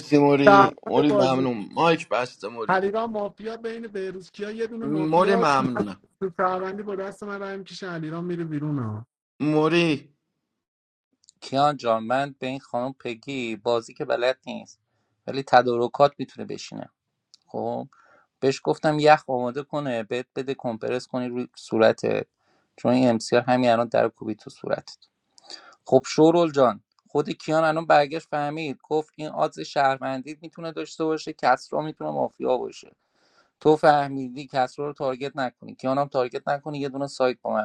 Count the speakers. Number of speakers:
three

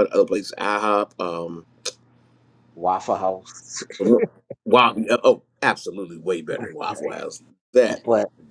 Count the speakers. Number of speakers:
two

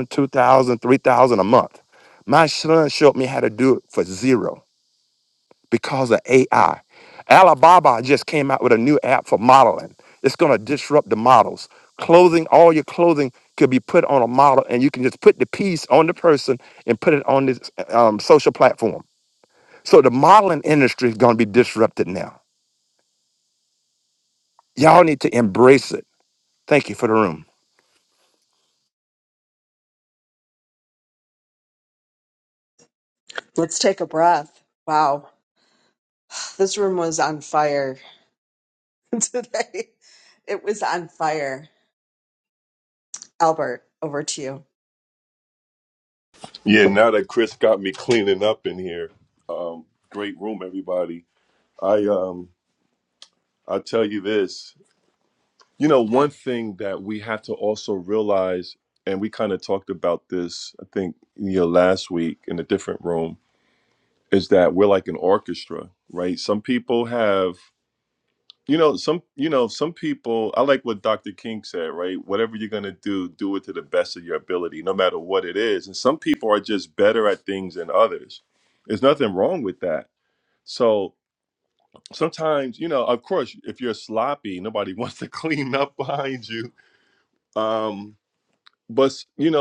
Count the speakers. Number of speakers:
three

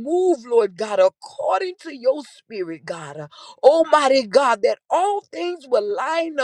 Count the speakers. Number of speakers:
one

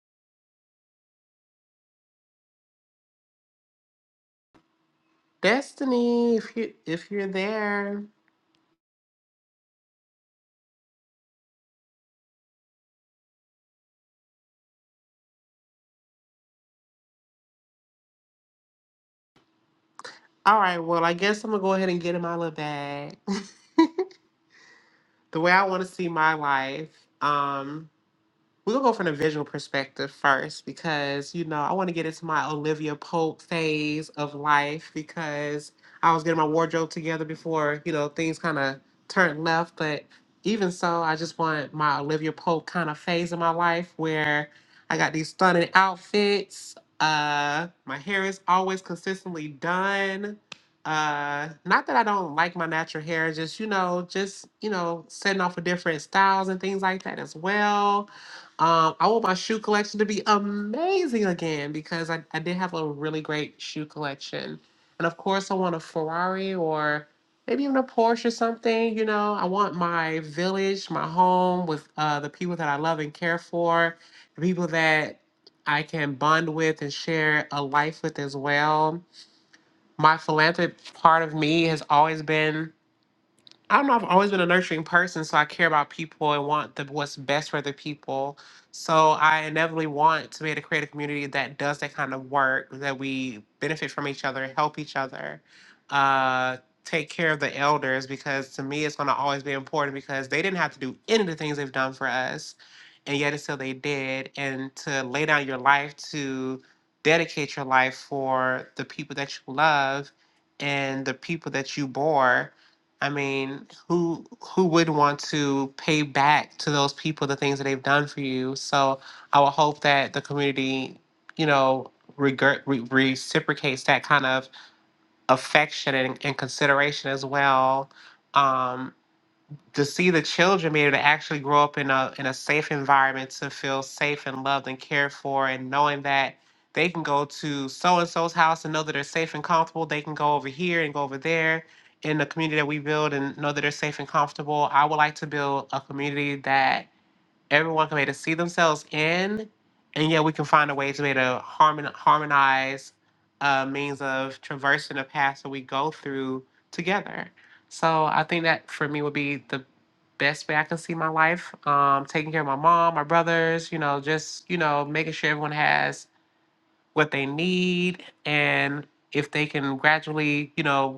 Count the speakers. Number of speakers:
one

